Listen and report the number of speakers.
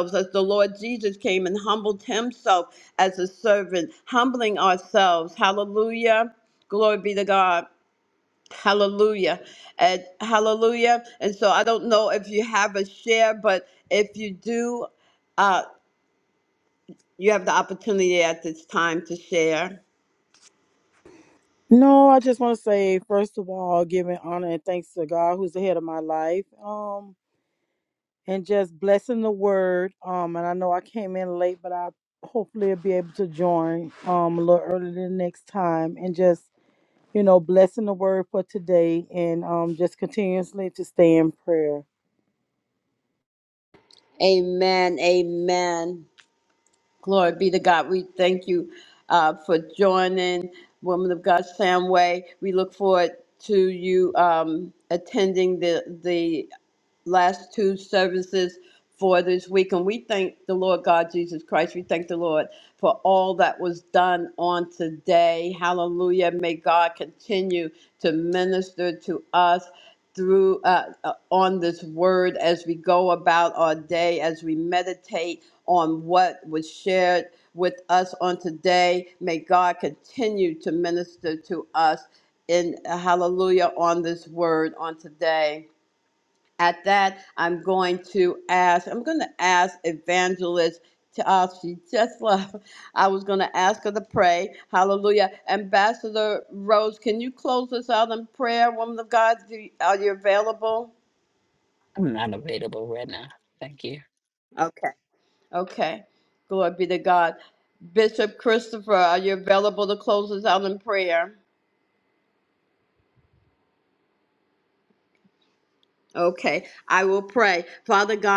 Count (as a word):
three